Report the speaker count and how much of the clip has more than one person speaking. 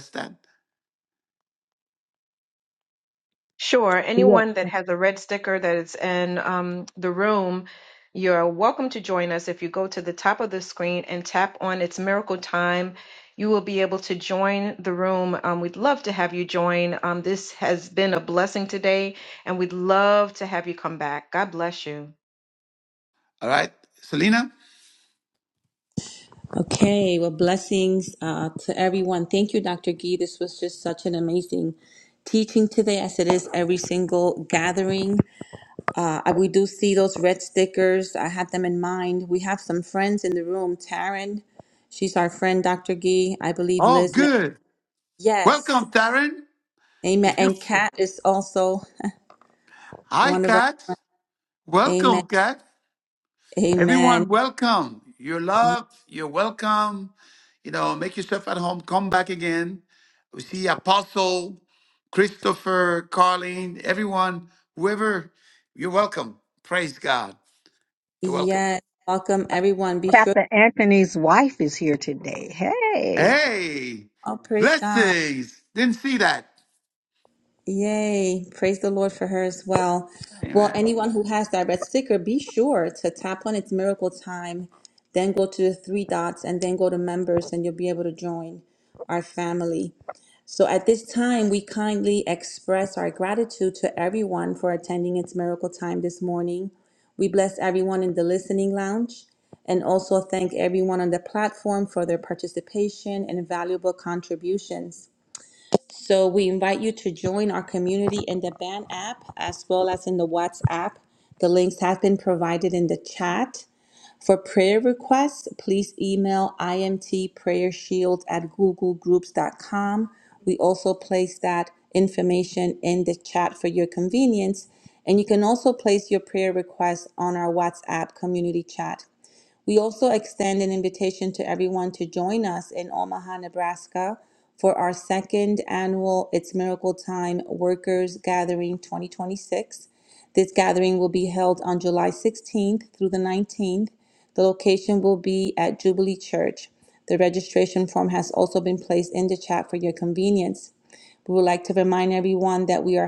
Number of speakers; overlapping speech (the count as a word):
four, about 3%